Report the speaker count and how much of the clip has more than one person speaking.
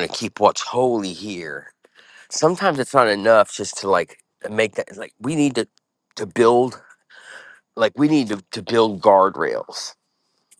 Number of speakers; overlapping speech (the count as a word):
one, no overlap